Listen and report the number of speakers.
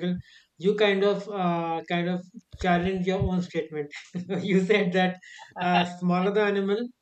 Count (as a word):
one